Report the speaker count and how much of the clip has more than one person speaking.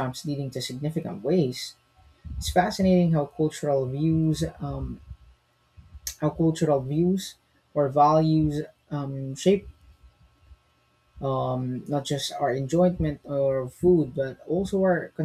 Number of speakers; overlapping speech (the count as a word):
one, no overlap